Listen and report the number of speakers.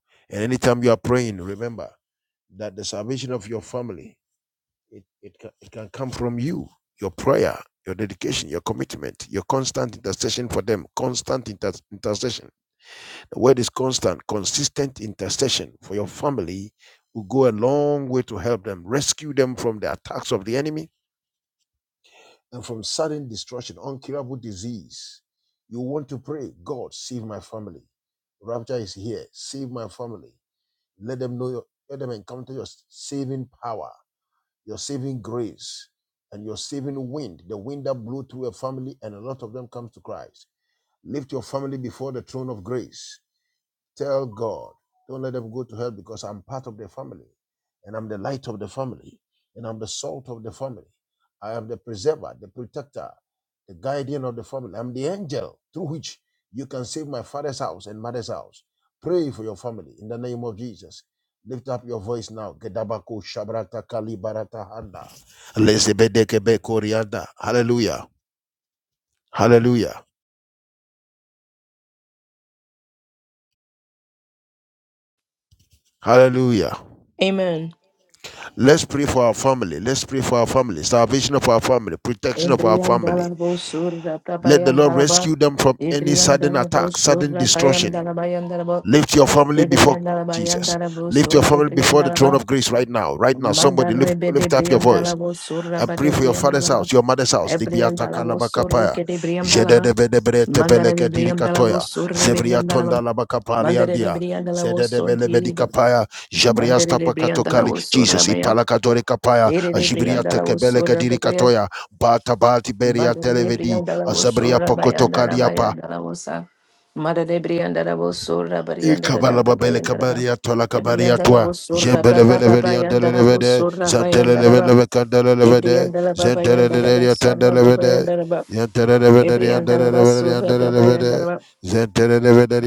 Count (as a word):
two